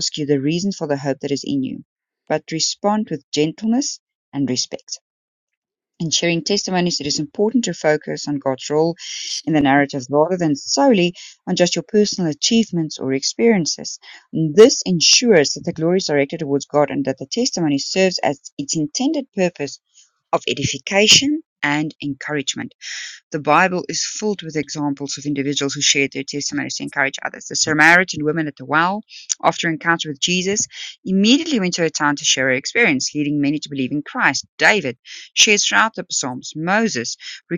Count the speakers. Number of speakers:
one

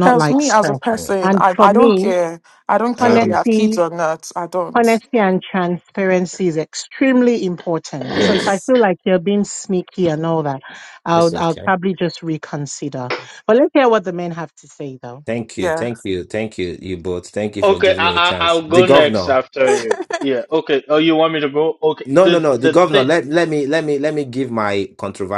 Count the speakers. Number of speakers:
four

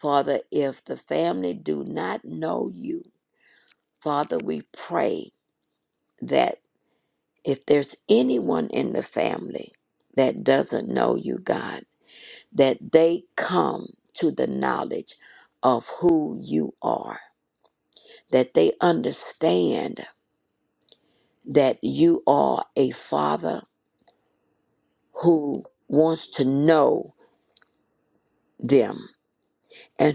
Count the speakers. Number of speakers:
one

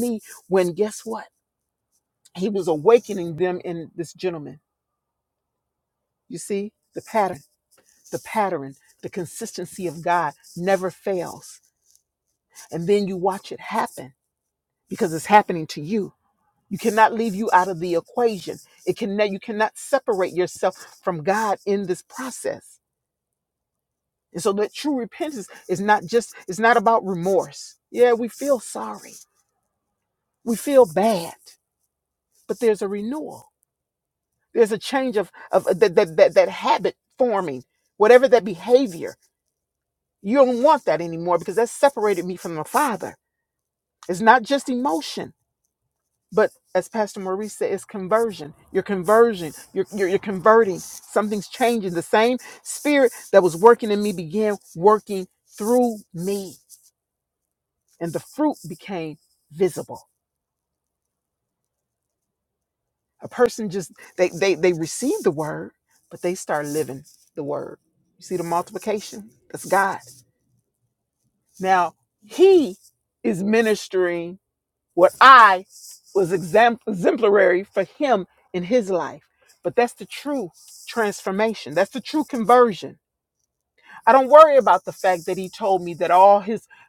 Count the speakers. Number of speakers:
one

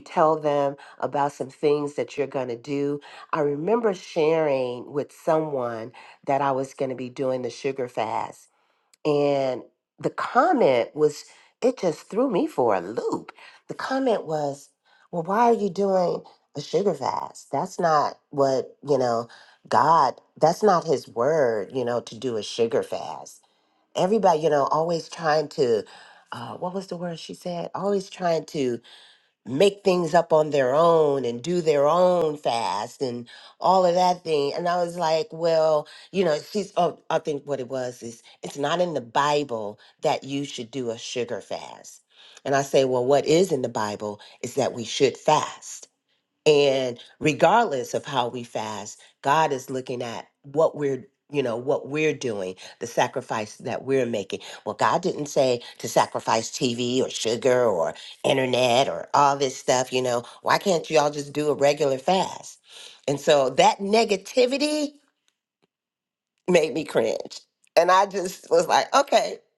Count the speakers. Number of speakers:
one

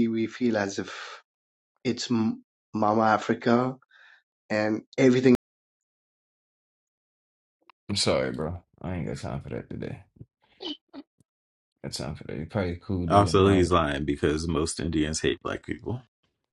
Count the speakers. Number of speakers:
three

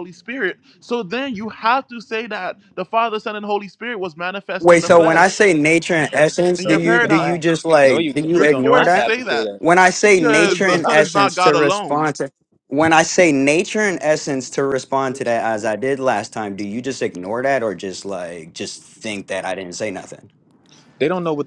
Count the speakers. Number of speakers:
three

